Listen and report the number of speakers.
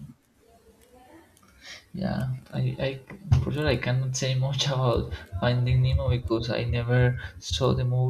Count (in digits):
1